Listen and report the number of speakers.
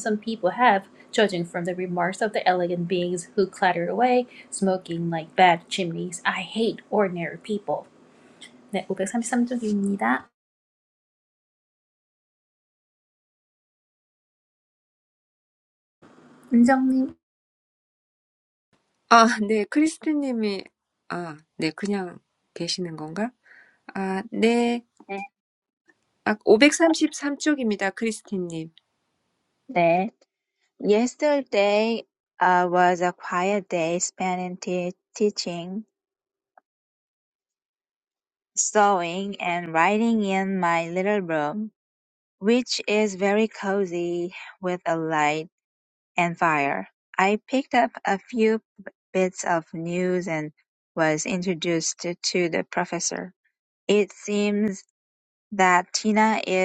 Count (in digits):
3